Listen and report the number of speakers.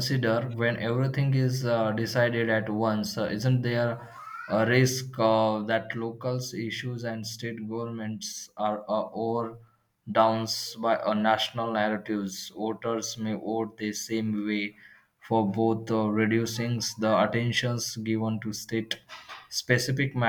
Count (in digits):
1